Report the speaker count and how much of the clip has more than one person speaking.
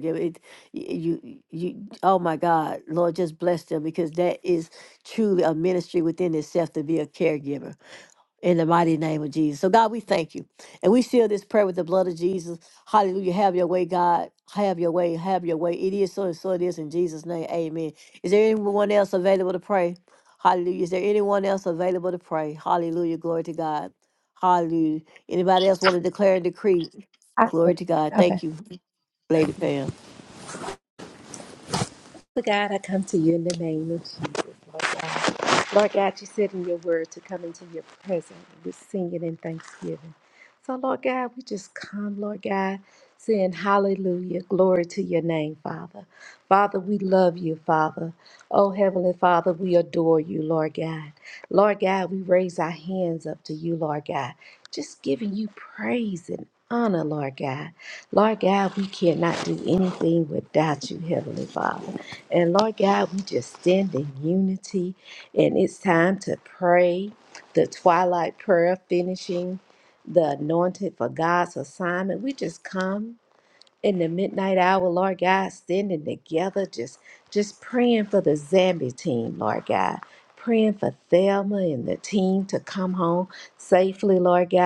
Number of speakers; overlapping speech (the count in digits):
2, about 1%